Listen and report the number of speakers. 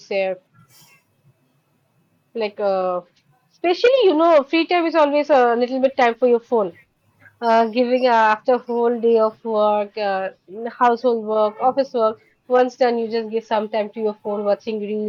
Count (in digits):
1